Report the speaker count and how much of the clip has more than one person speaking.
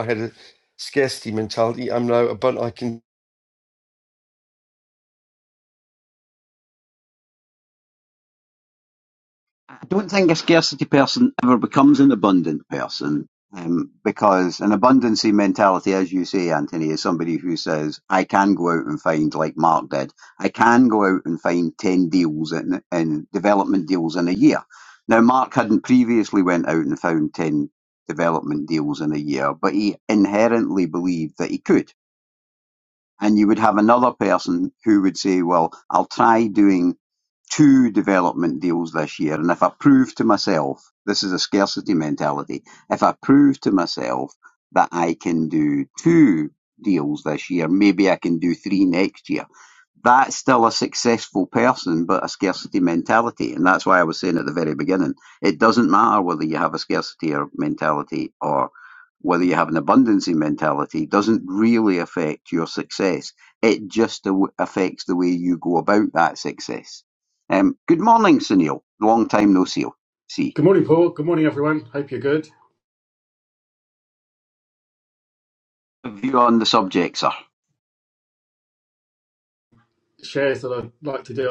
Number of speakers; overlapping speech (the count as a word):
three, no overlap